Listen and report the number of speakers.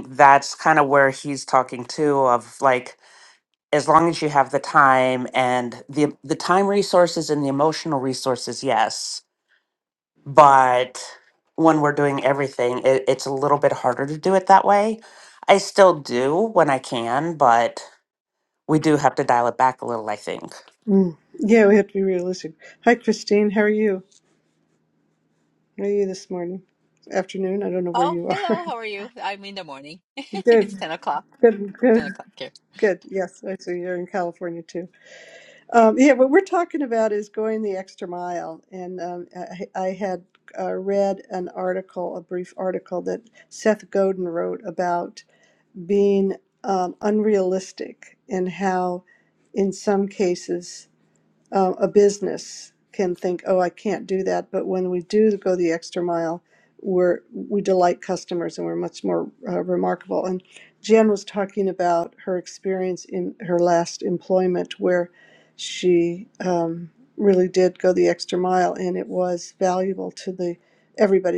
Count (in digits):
3